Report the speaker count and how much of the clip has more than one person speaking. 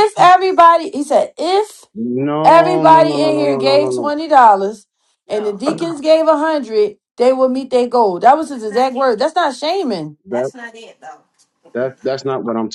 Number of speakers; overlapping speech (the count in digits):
3, about 24%